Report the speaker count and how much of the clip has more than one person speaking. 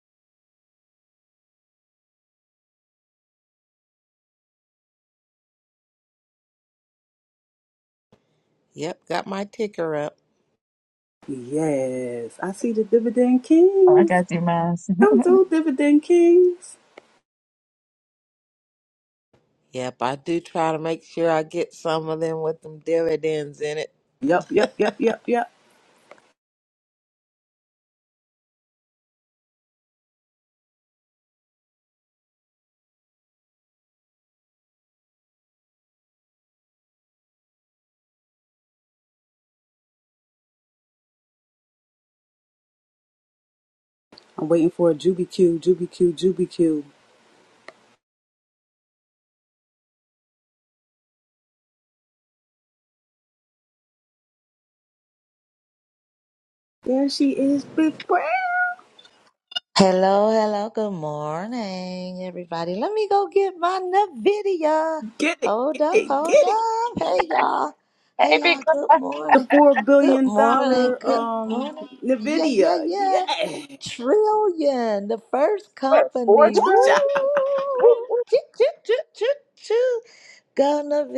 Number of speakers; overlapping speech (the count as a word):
four, about 7%